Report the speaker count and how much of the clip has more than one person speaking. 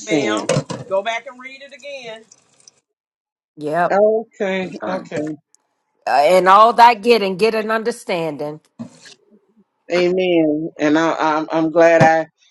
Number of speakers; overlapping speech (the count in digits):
3, about 5%